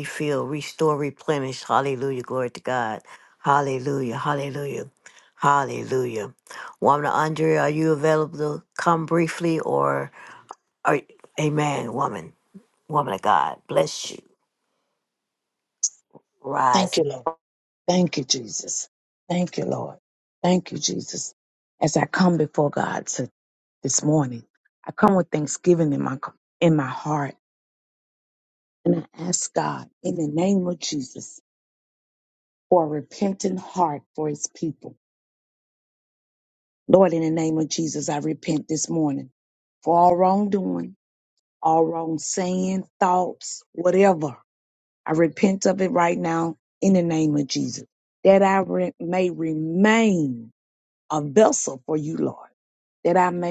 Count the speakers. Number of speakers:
two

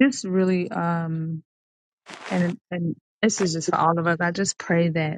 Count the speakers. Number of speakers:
one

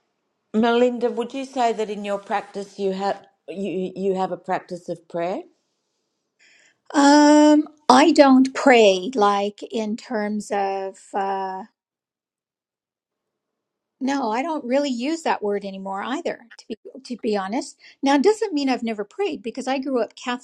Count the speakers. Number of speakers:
two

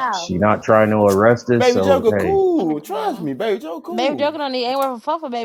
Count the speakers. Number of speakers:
three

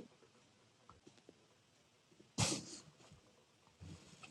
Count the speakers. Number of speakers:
zero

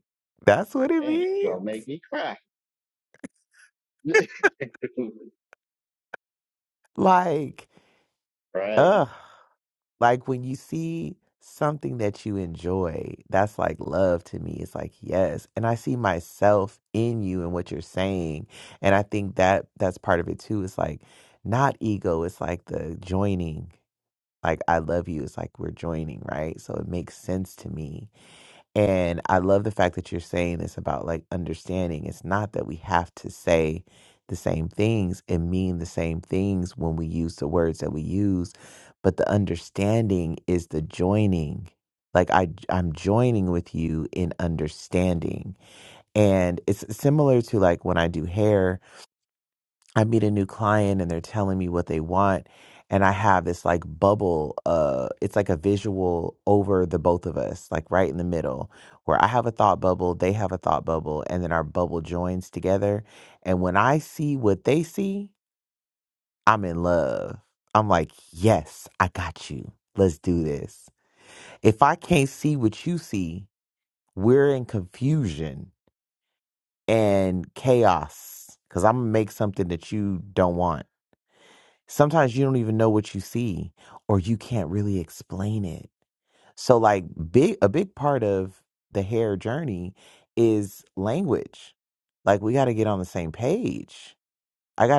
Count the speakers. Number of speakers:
two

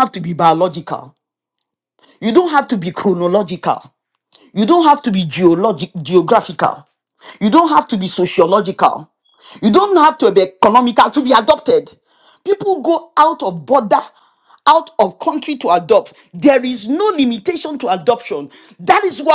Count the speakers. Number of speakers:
one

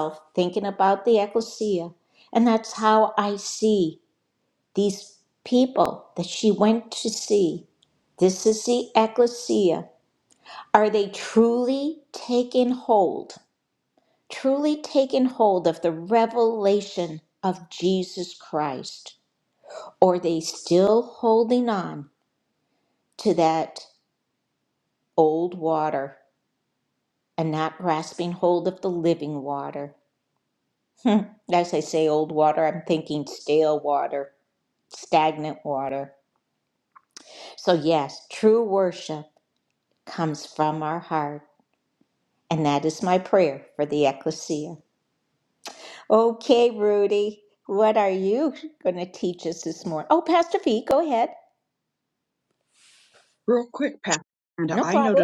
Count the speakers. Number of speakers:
two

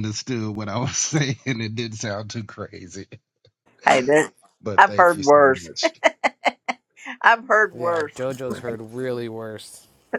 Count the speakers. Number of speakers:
three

